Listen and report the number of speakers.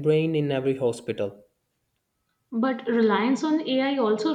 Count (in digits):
2